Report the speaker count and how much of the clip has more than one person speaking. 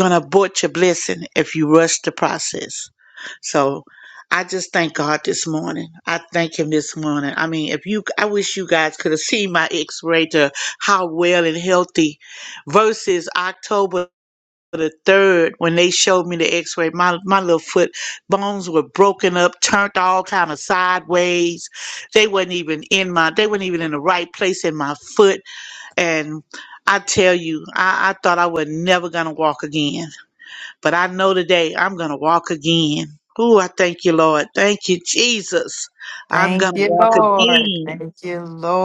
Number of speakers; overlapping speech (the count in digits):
2, about 4%